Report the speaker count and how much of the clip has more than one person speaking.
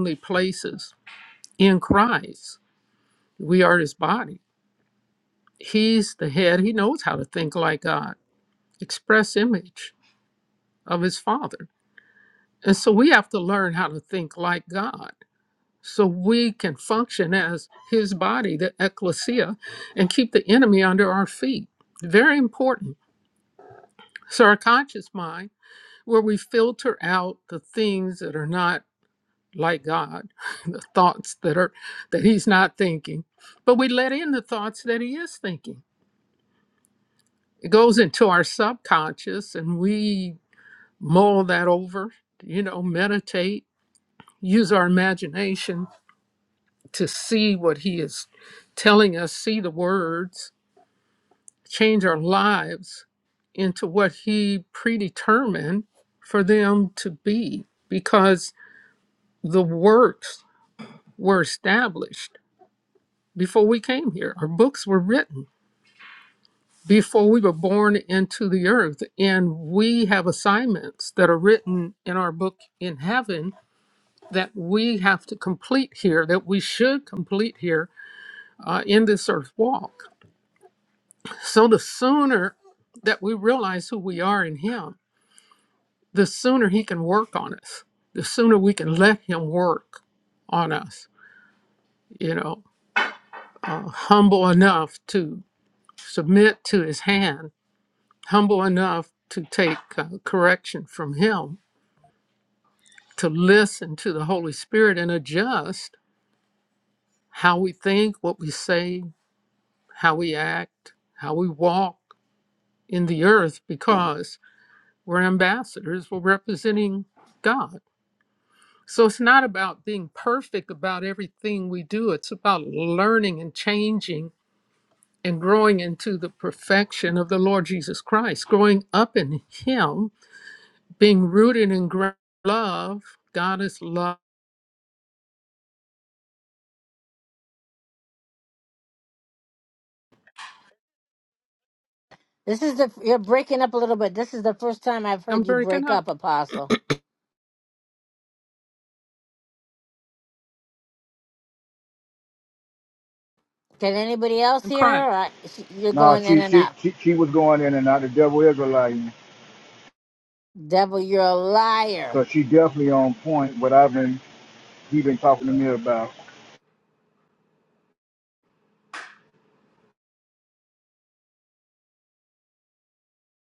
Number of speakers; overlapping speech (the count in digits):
3, about 1%